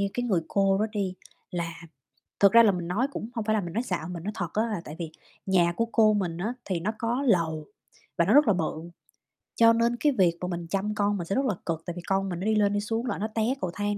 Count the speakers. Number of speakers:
one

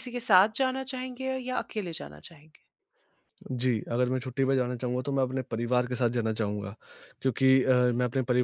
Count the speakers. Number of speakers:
two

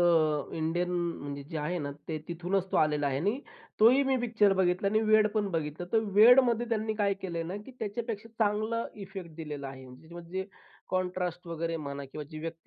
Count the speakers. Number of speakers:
one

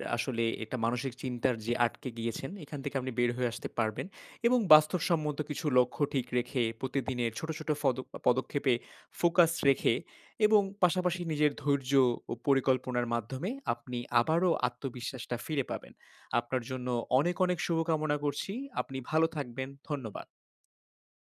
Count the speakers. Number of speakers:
one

